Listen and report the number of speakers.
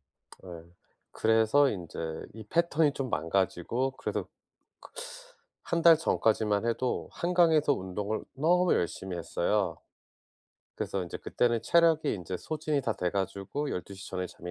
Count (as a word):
one